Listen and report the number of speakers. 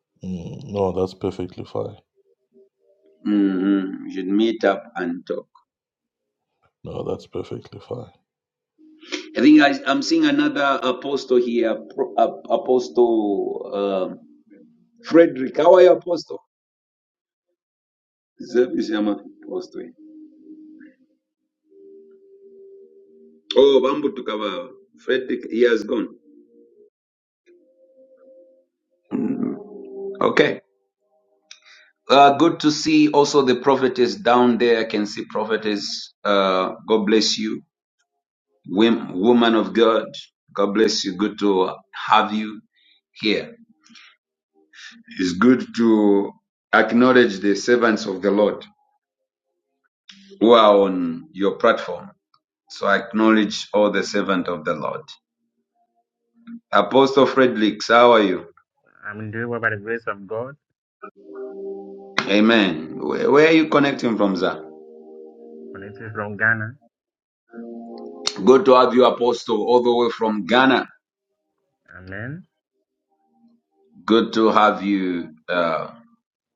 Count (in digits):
3